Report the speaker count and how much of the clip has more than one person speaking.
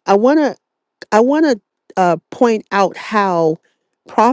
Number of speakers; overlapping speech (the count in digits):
1, no overlap